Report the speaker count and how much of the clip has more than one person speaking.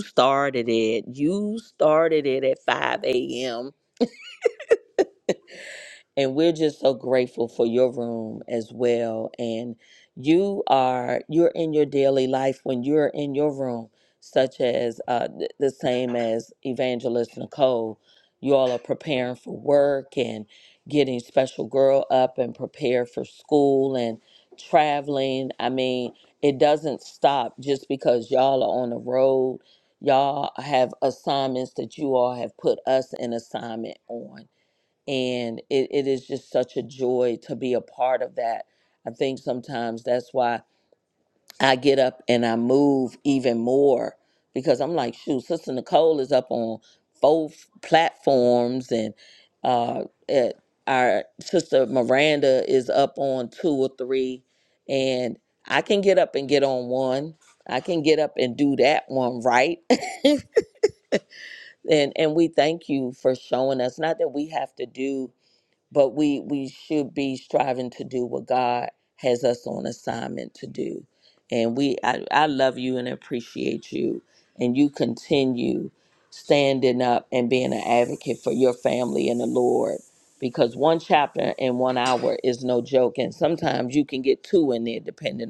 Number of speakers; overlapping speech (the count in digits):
1, no overlap